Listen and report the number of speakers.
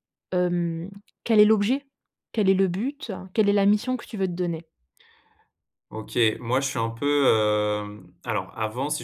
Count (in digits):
2